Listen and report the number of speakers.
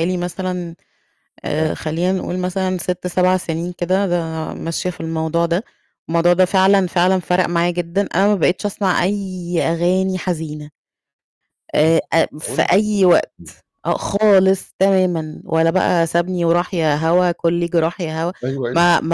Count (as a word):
two